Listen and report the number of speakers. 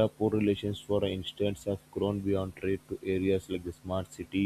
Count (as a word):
one